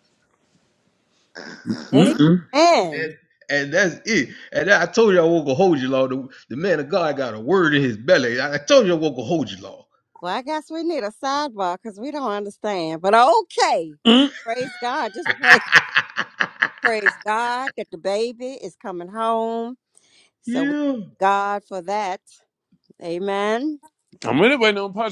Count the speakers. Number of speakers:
three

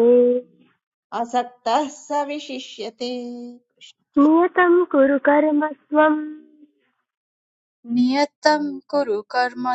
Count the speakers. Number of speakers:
three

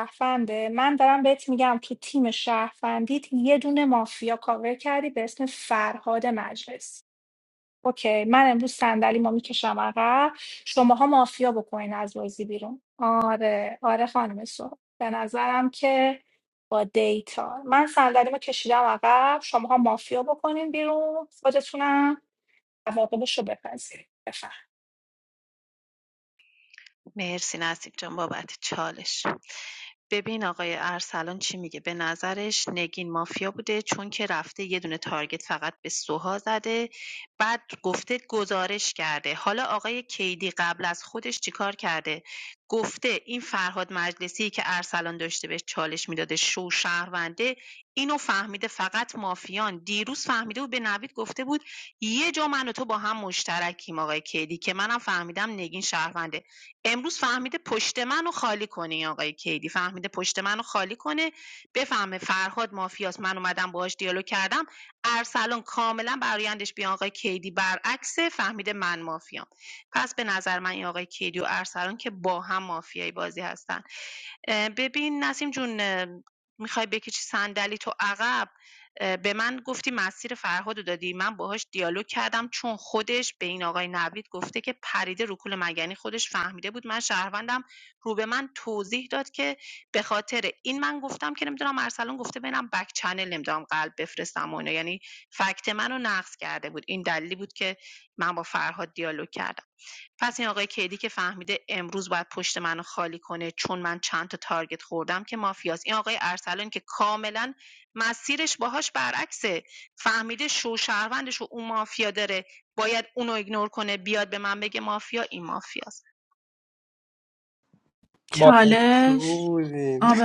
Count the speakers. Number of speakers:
four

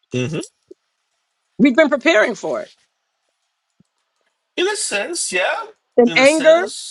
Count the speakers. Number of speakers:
two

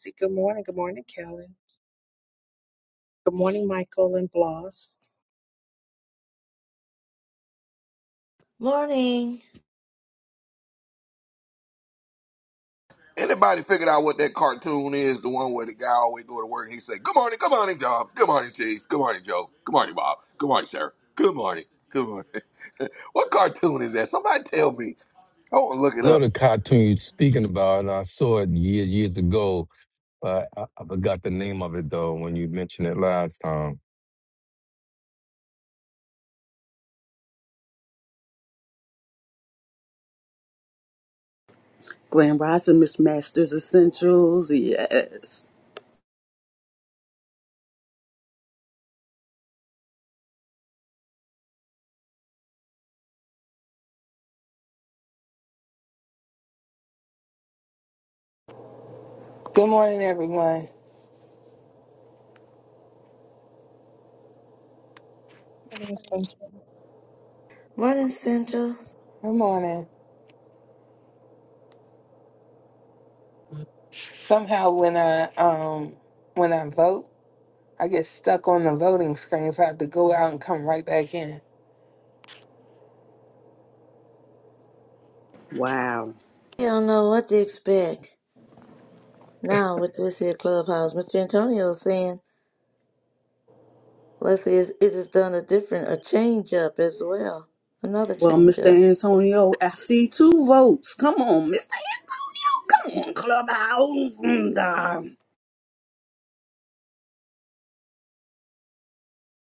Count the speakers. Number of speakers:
six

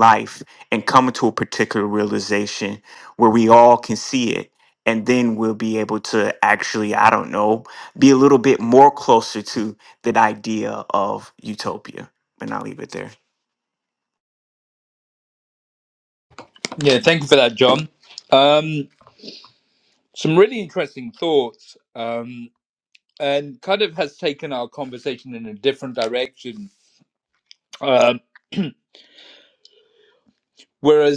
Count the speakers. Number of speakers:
two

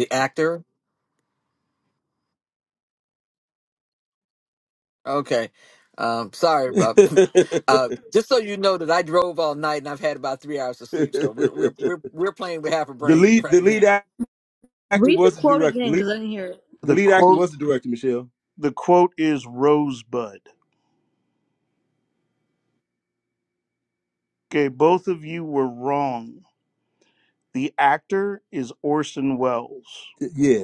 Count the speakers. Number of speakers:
four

